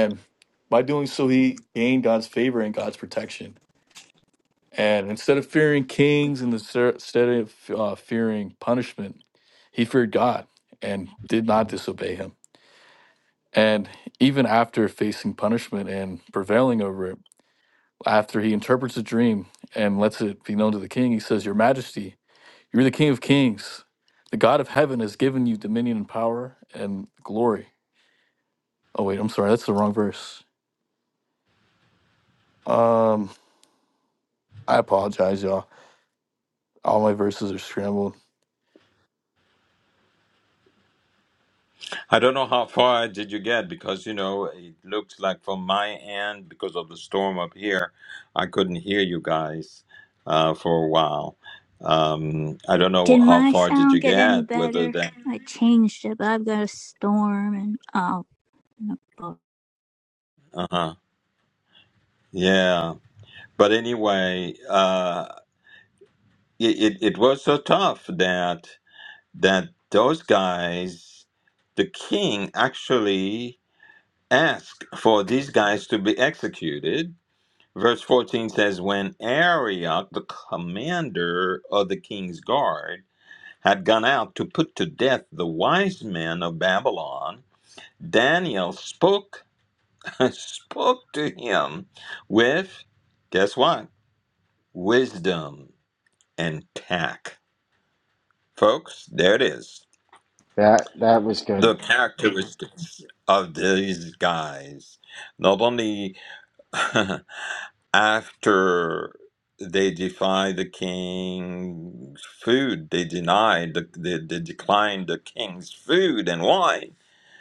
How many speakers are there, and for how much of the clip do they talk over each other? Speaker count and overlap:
four, about 2%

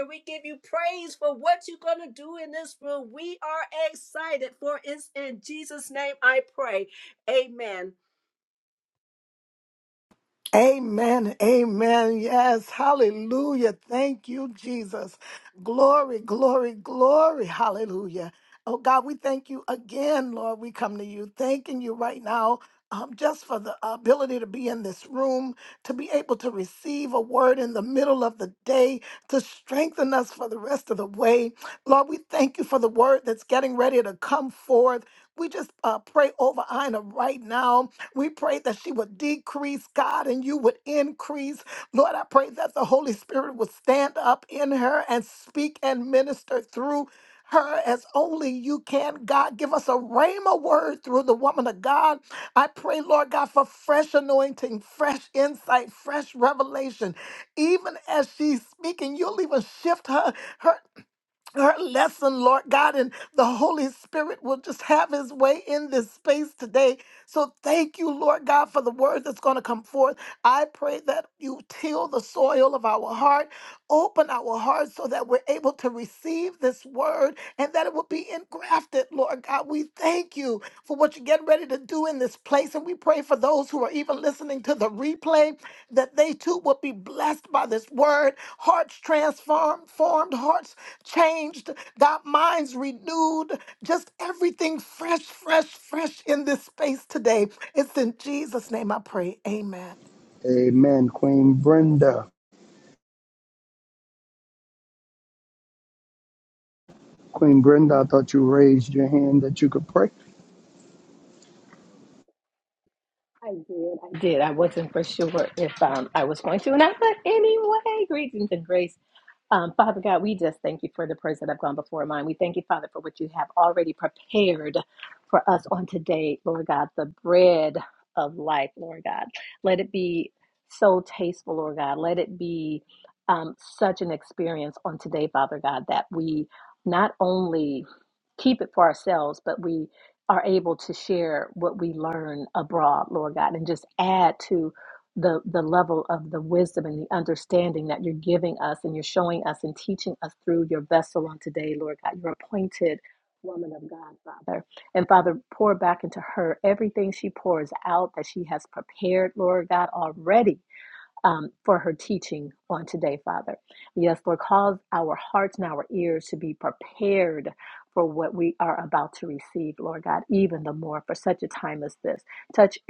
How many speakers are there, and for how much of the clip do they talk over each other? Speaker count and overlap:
four, no overlap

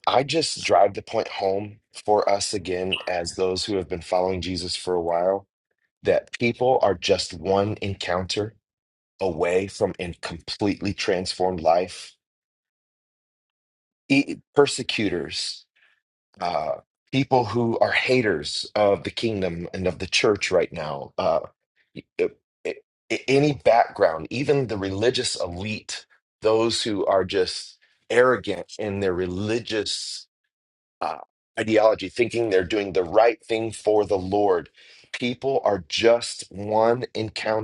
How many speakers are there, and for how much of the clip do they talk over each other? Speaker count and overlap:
one, no overlap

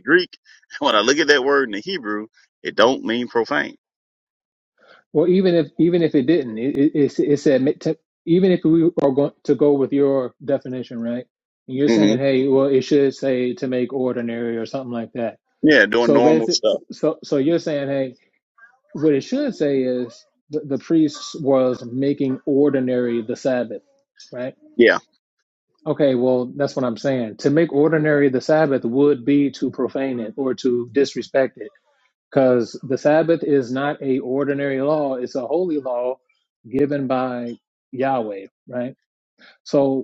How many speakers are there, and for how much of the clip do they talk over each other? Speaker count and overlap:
two, about 3%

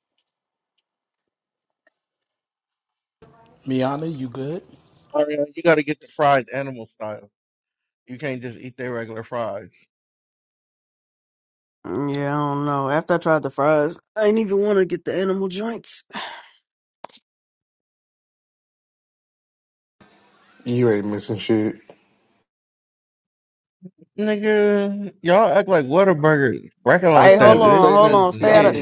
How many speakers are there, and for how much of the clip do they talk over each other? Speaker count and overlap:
four, about 6%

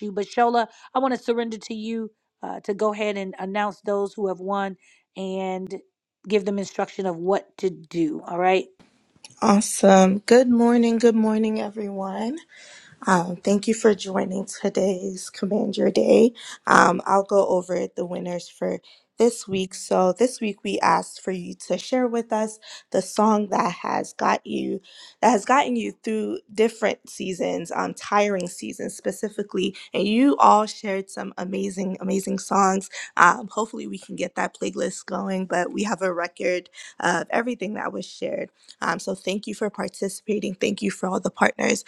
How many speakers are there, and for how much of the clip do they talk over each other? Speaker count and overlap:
two, no overlap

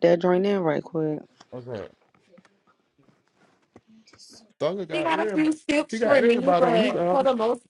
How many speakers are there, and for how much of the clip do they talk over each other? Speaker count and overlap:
three, about 24%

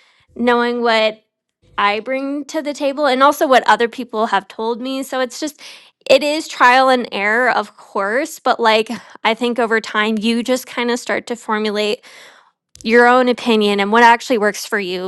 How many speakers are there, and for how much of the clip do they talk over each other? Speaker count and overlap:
one, no overlap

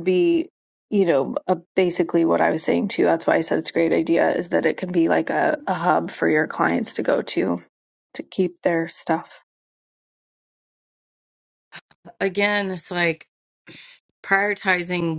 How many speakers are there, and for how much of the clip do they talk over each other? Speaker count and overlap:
two, no overlap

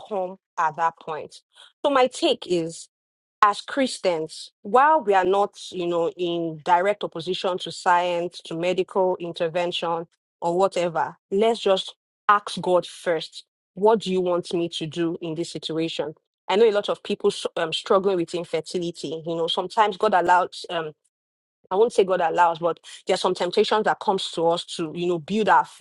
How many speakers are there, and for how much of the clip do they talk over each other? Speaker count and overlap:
one, no overlap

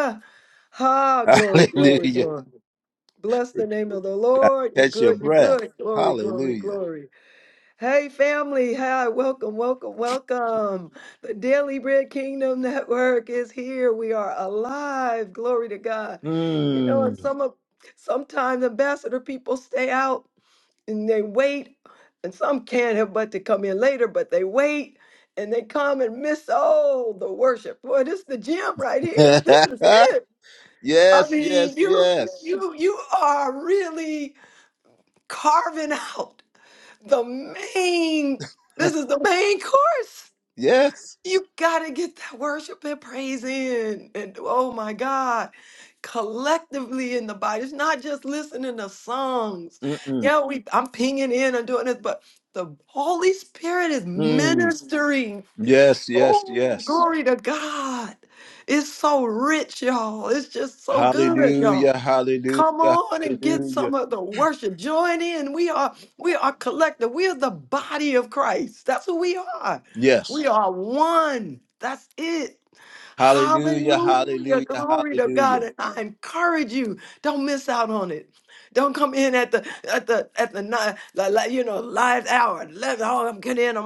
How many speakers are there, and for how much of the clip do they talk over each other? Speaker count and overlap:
two, about 11%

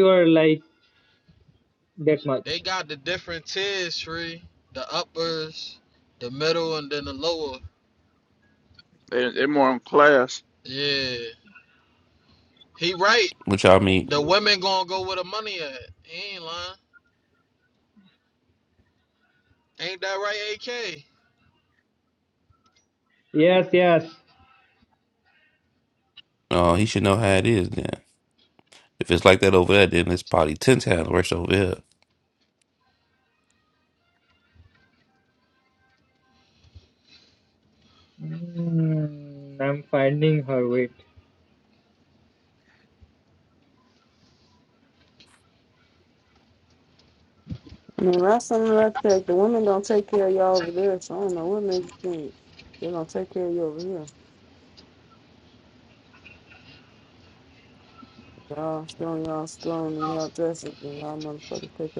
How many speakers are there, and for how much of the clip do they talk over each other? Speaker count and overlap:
five, under 1%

